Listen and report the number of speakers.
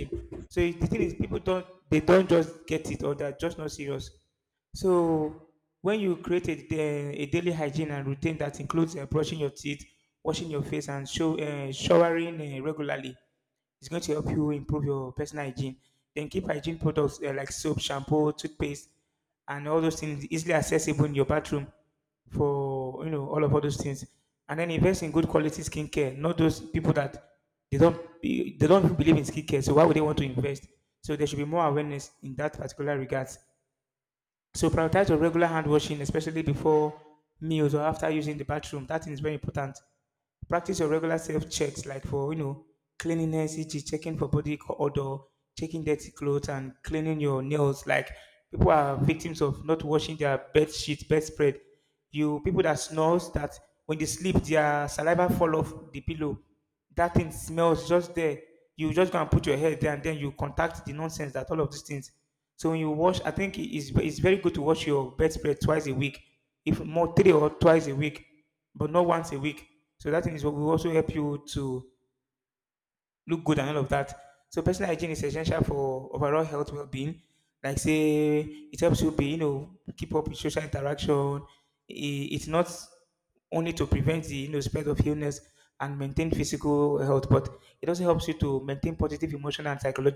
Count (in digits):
1